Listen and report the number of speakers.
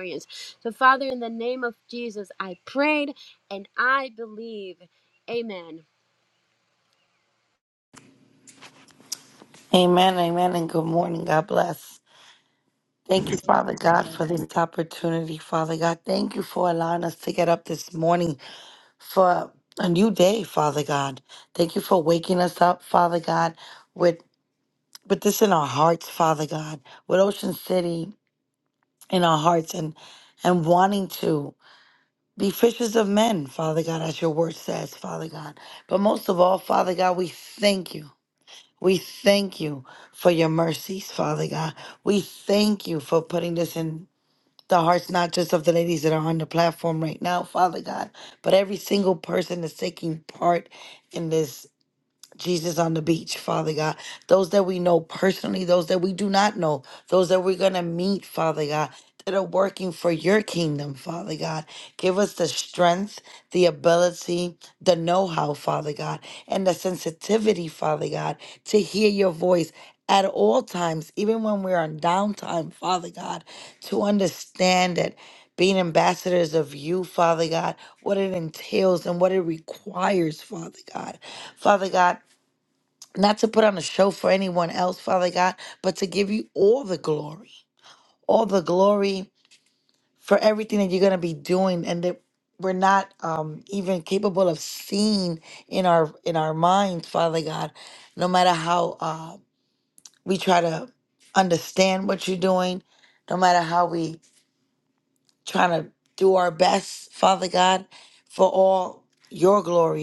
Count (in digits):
2